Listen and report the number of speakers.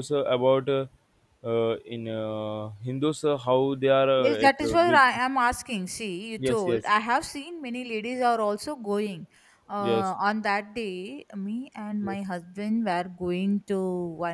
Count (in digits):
2